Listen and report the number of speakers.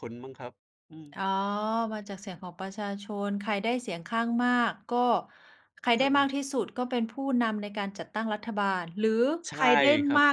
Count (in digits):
2